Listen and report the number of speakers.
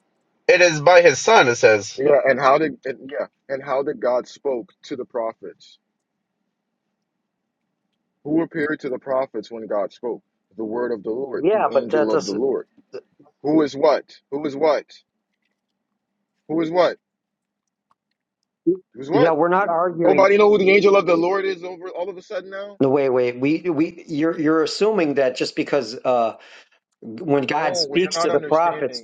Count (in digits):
3